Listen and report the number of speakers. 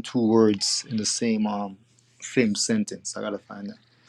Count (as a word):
one